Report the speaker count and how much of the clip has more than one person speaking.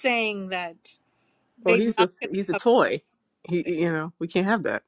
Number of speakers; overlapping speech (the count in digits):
2, about 20%